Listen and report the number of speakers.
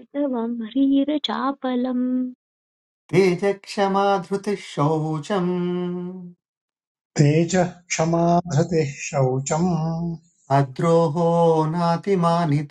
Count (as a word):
three